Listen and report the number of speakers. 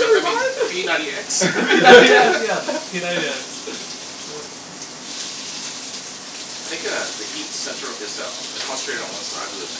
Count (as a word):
two